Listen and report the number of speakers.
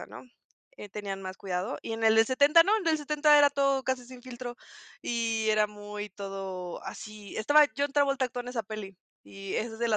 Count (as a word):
one